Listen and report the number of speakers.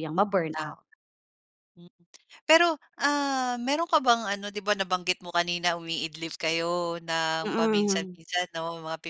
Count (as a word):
two